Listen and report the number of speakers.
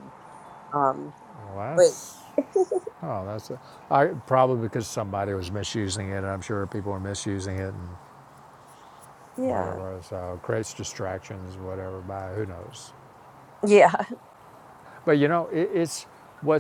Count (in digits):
2